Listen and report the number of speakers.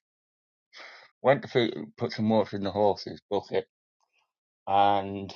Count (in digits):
1